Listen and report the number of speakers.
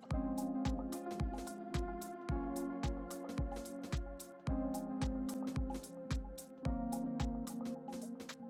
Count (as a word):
zero